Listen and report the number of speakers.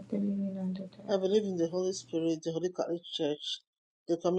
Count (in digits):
2